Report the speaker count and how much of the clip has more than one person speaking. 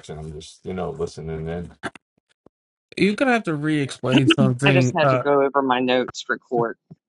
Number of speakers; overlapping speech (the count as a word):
three, about 9%